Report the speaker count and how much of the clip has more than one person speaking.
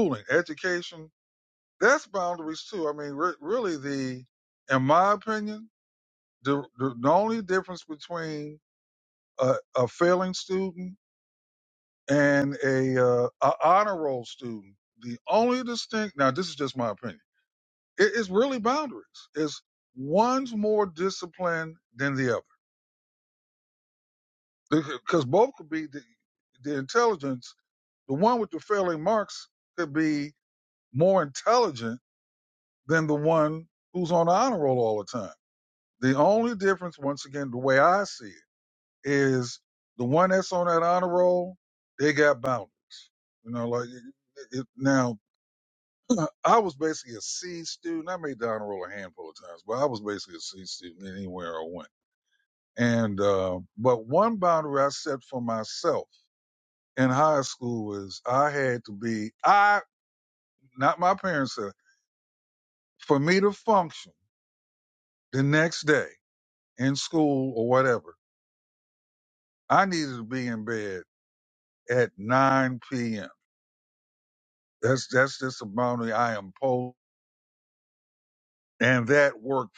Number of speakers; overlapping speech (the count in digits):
1, no overlap